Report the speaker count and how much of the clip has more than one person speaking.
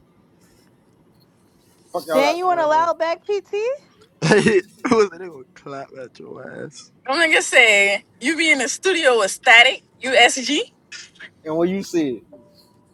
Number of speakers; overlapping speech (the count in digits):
4, about 6%